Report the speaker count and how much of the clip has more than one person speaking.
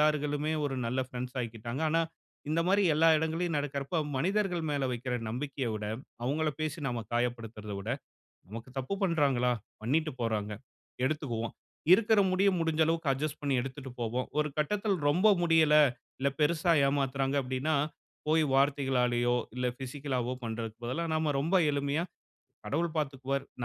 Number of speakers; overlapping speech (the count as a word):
one, no overlap